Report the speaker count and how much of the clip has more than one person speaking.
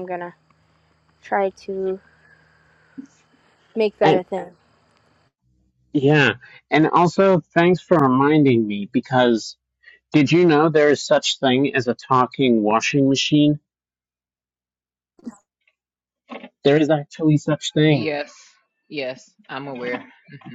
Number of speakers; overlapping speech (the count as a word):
three, about 1%